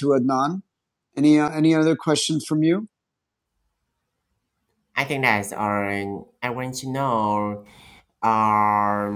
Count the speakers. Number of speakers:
two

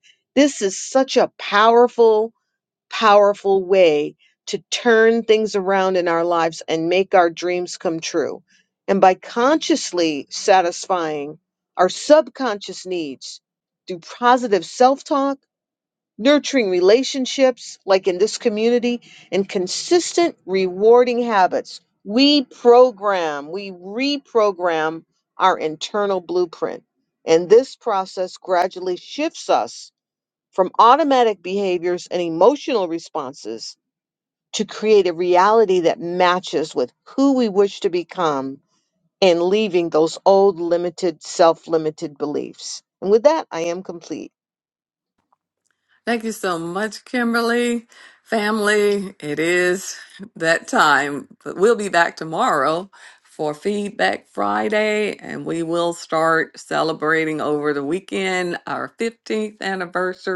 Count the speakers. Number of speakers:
two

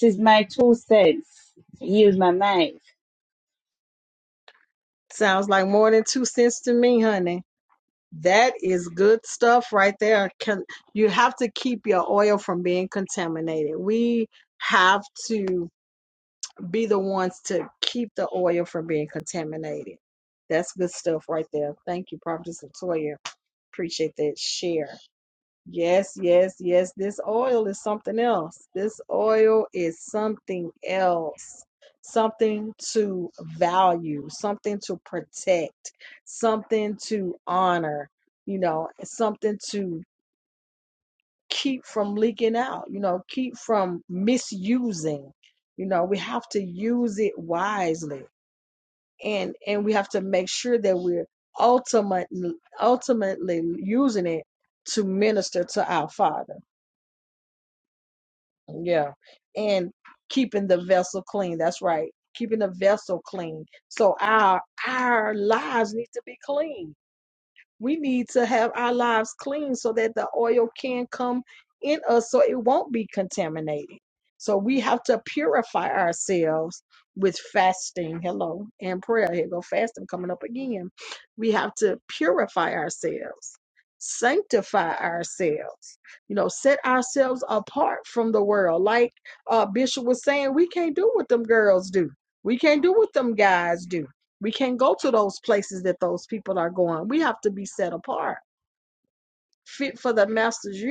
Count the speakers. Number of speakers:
two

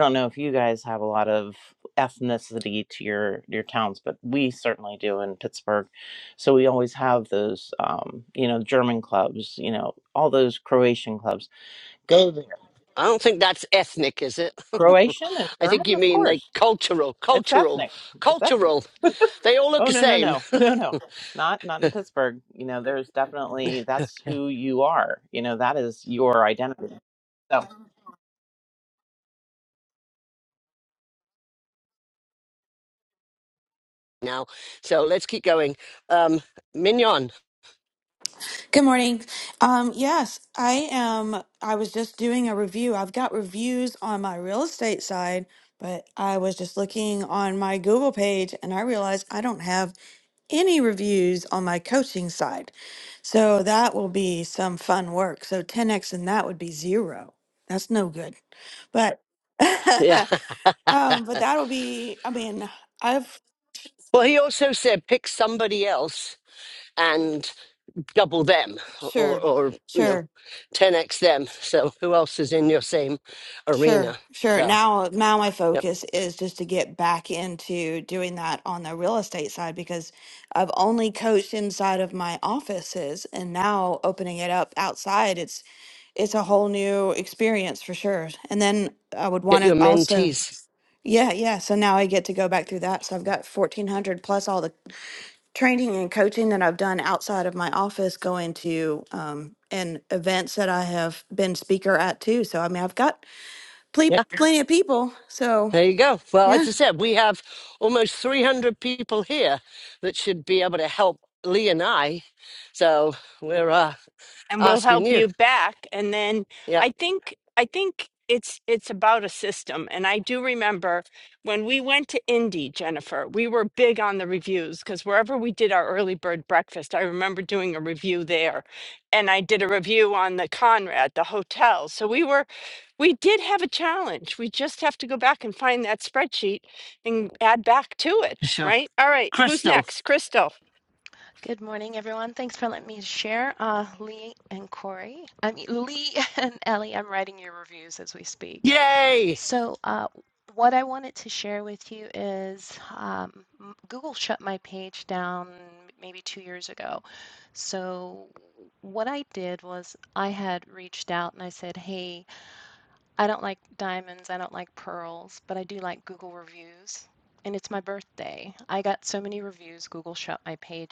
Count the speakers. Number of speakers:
five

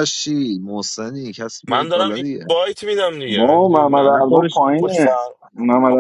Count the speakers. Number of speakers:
three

